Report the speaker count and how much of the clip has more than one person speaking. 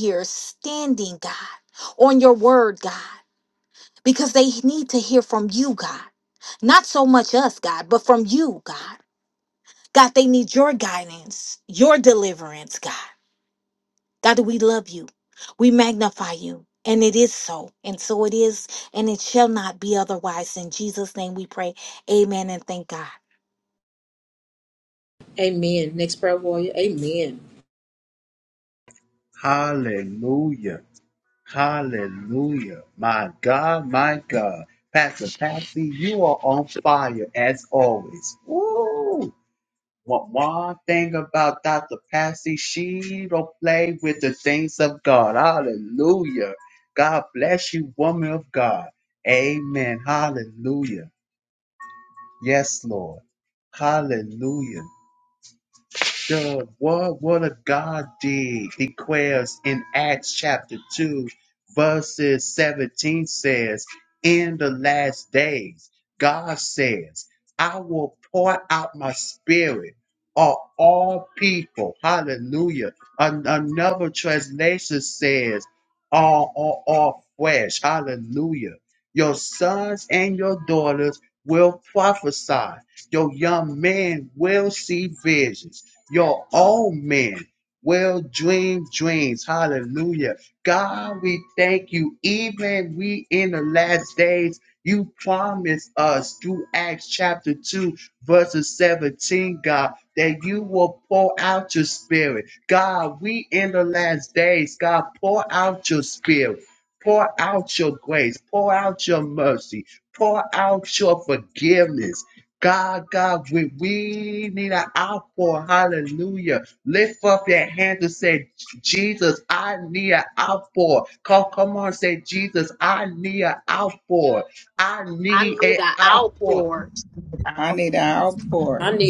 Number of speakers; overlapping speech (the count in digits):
4, about 1%